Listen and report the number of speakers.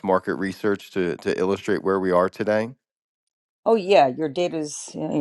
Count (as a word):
two